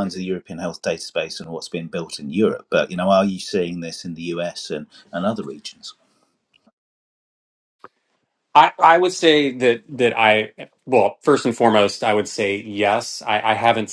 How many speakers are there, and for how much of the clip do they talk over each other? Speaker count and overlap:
2, no overlap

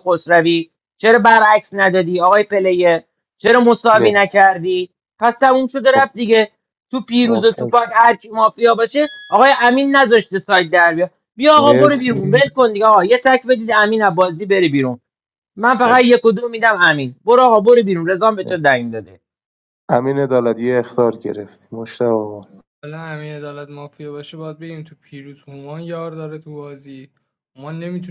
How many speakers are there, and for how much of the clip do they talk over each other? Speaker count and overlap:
3, about 7%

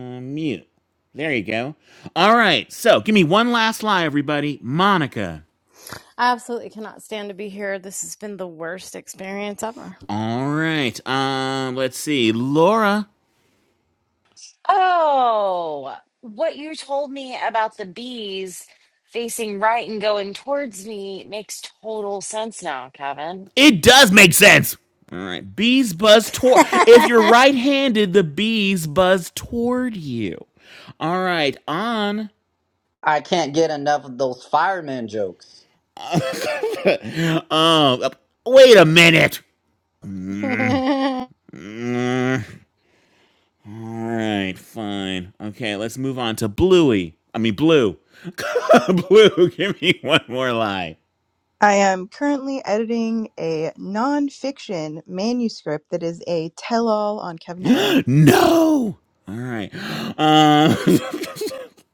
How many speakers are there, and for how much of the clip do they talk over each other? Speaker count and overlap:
5, about 1%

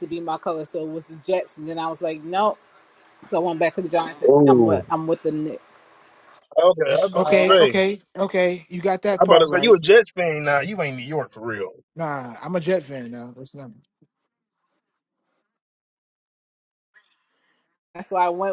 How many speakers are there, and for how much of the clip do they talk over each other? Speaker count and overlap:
3, about 12%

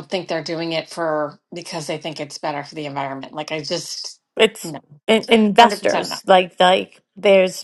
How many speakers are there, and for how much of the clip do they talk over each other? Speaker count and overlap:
2, about 8%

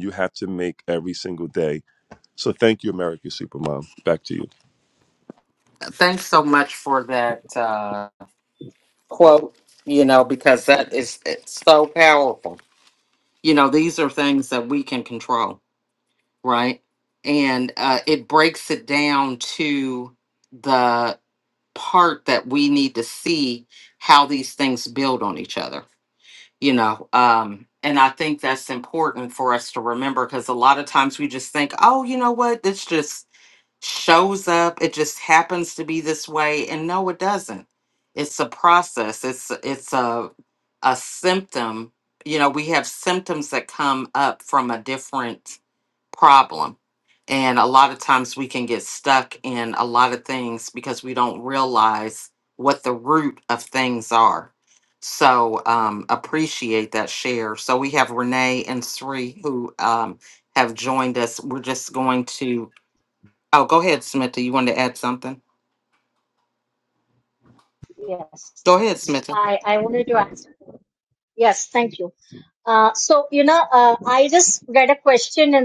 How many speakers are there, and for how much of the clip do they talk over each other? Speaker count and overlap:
3, under 1%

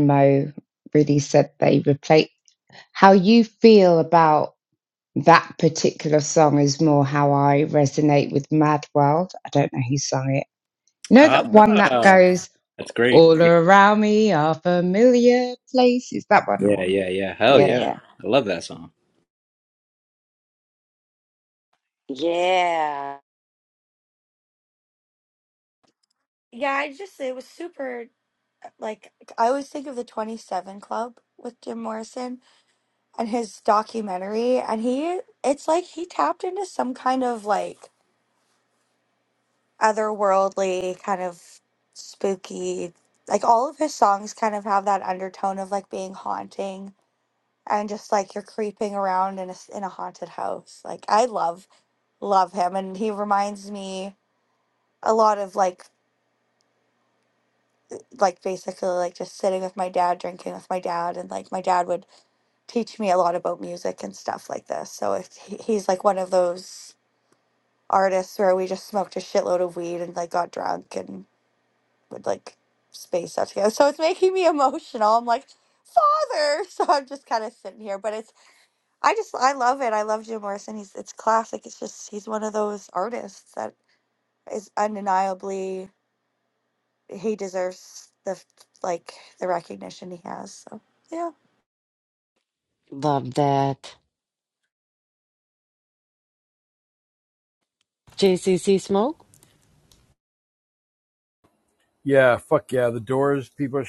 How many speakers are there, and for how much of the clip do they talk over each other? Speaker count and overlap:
5, about 2%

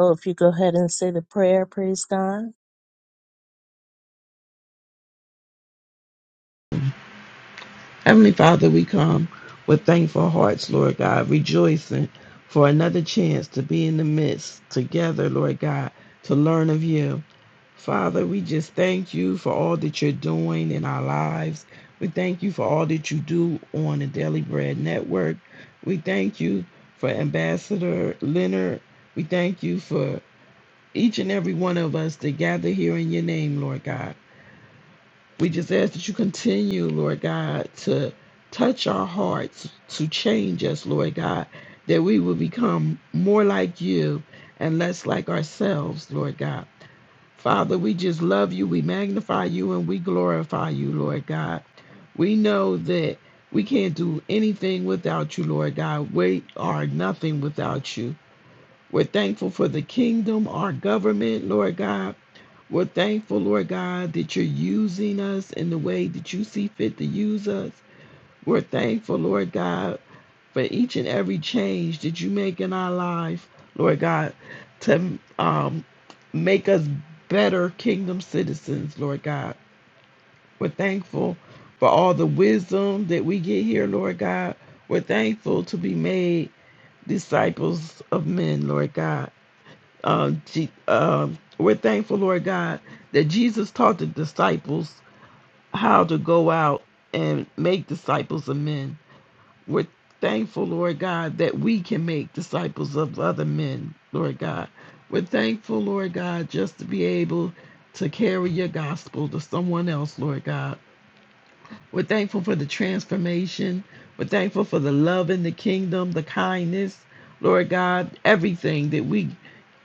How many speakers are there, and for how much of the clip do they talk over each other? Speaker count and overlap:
2, no overlap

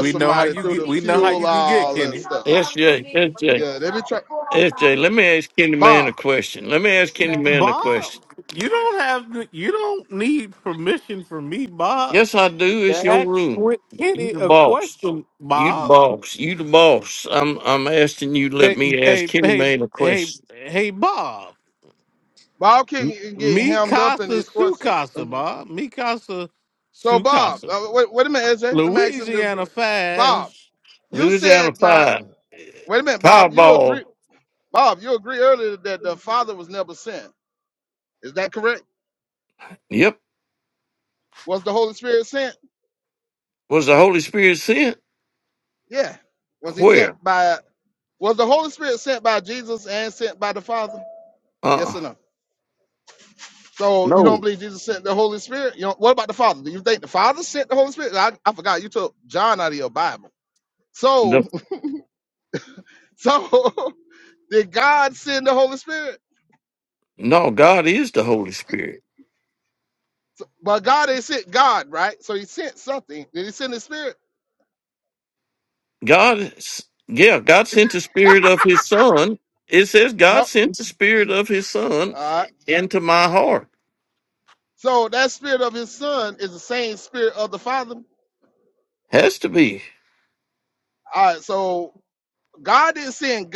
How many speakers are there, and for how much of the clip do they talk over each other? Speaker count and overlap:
3, about 15%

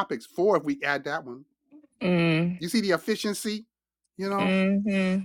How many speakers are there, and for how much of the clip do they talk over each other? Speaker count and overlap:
2, about 4%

